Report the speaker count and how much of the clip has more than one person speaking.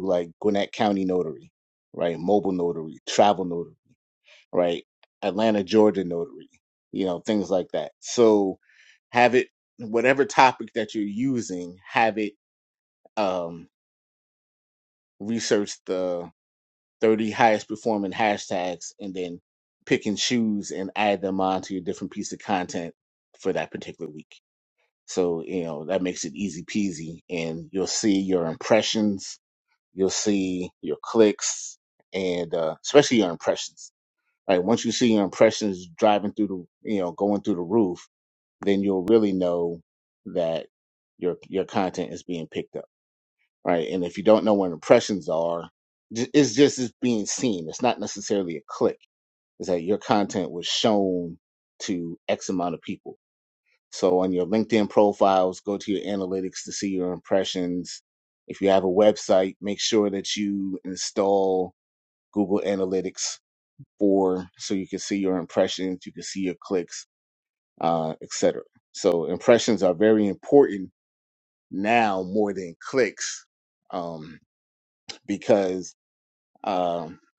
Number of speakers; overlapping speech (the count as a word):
one, no overlap